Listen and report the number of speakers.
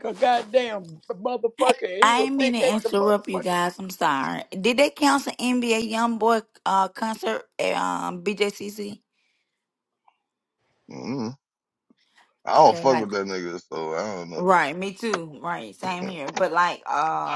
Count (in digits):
3